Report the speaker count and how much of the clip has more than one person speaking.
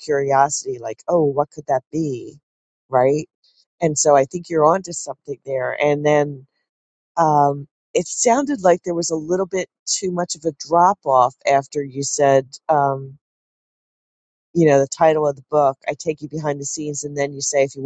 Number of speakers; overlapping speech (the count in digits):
1, no overlap